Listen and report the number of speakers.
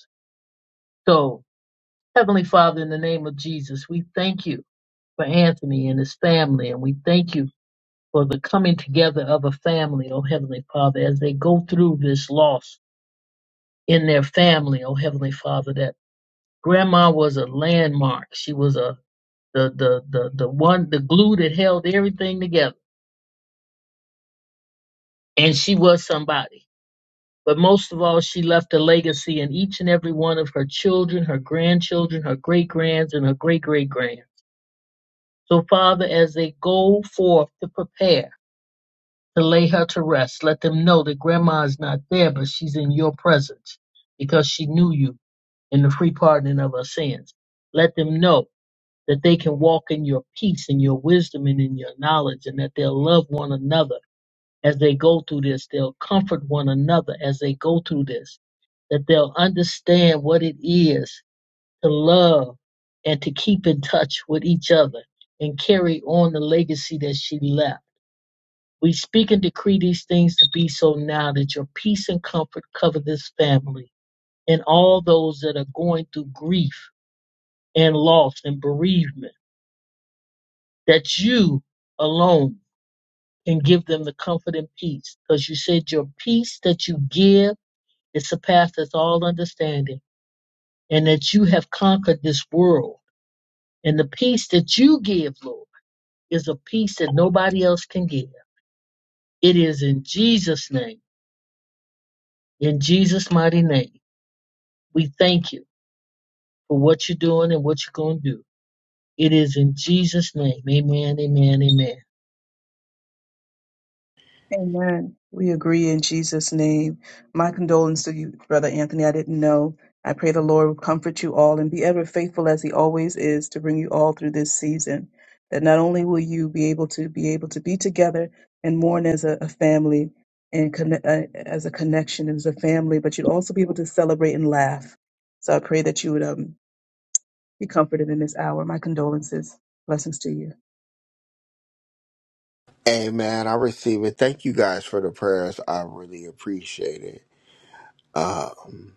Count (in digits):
3